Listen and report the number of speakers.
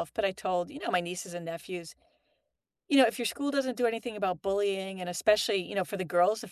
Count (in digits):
1